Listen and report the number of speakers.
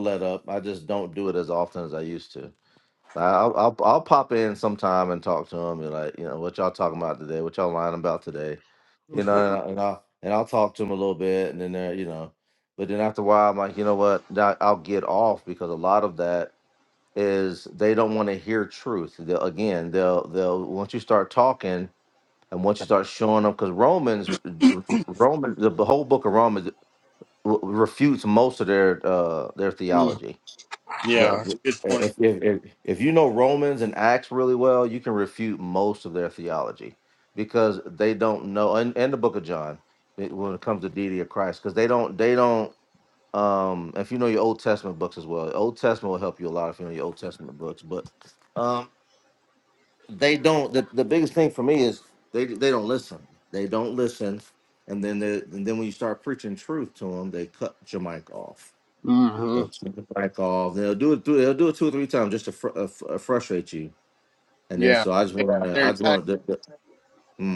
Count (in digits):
2